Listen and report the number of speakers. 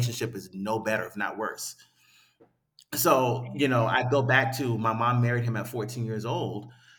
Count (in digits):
1